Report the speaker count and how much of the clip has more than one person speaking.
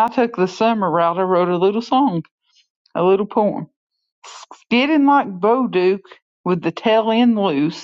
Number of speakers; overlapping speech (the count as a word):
one, no overlap